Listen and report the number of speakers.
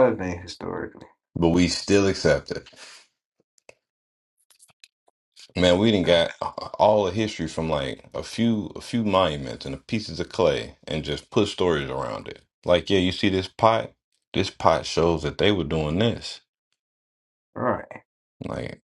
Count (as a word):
two